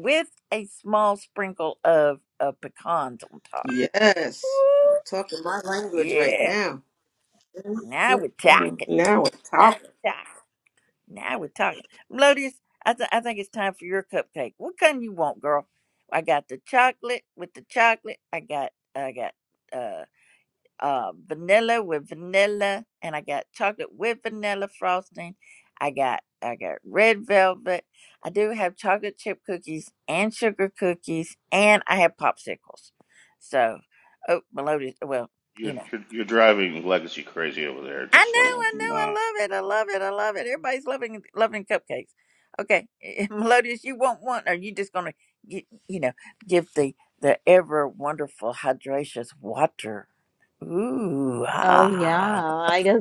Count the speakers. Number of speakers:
four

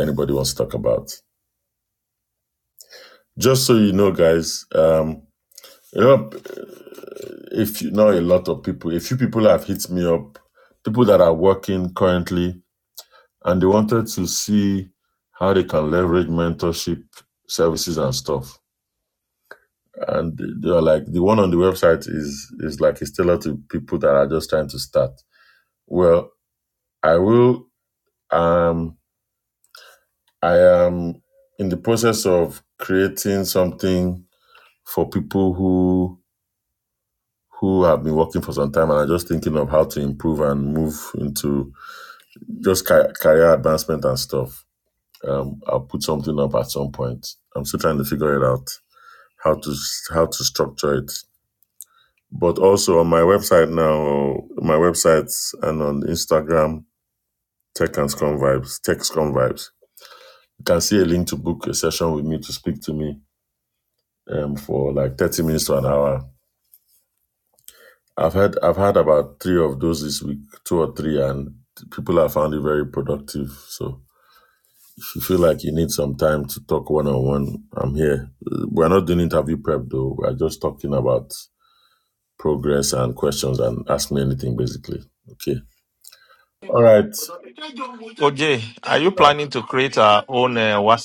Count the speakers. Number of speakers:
two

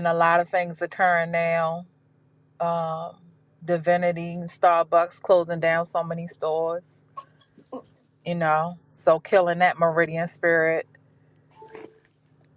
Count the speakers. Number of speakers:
one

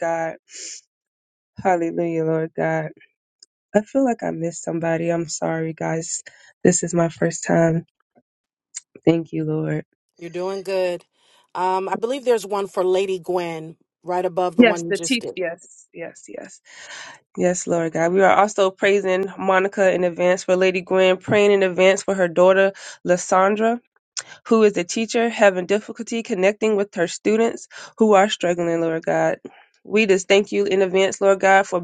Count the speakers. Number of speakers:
two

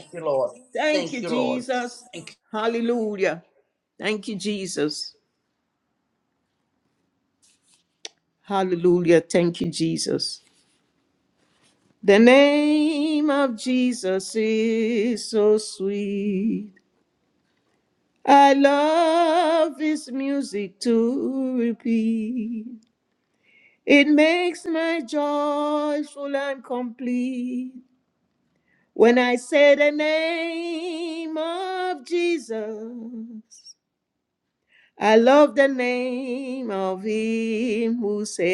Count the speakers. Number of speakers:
two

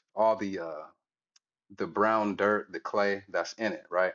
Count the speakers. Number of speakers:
one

